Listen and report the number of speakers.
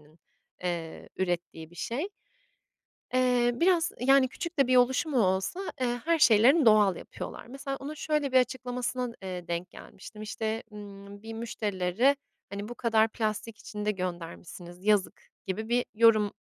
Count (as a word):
one